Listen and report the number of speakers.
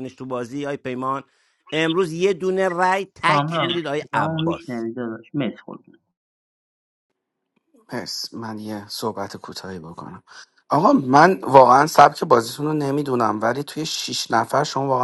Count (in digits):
3